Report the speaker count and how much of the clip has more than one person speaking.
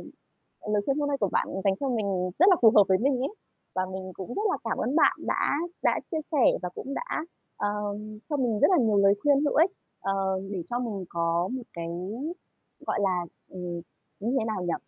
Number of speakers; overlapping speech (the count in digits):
1, no overlap